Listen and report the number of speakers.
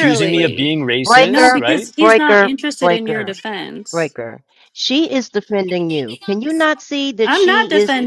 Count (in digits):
3